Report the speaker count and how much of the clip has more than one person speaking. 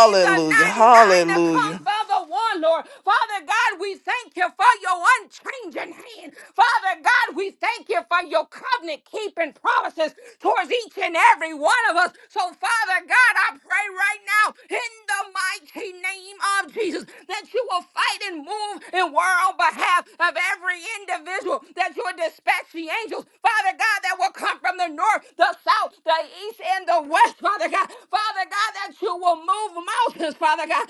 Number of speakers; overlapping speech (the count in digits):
2, about 3%